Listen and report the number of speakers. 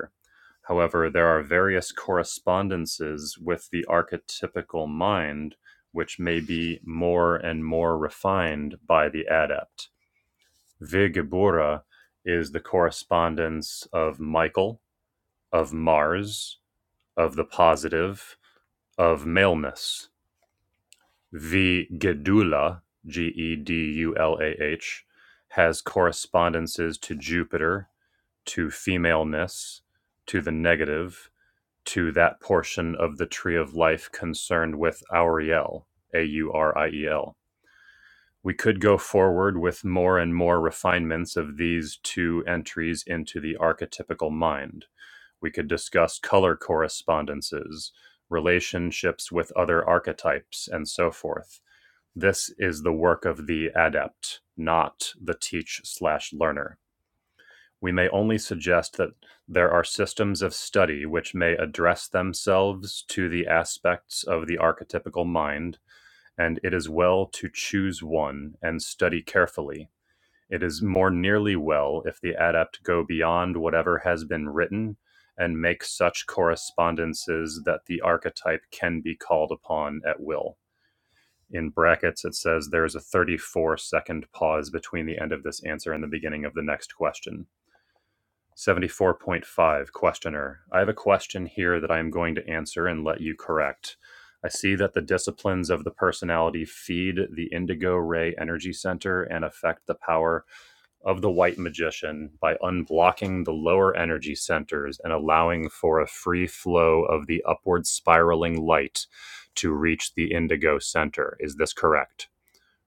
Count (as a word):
one